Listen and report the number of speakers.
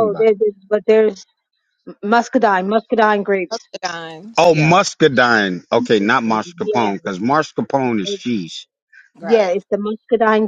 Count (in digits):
3